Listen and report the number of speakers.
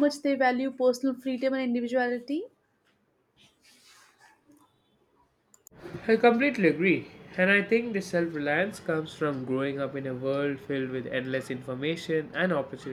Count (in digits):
2